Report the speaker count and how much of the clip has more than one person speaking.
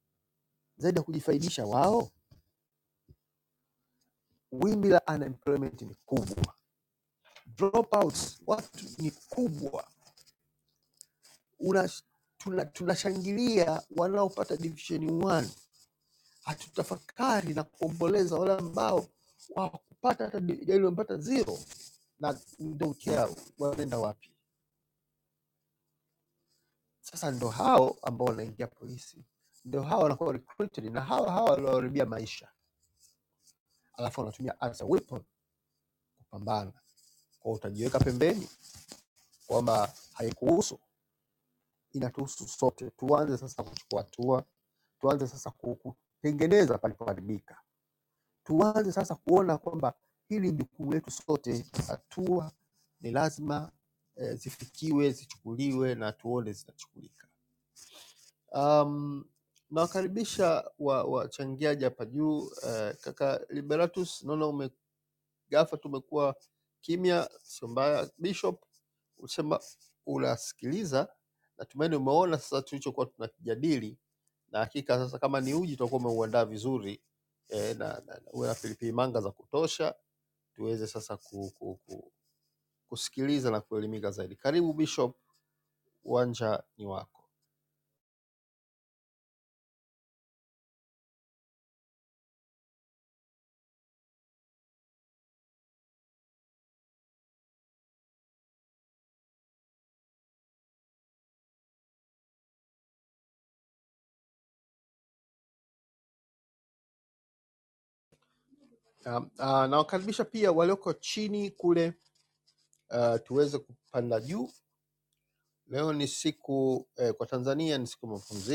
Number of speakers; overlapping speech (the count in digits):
1, no overlap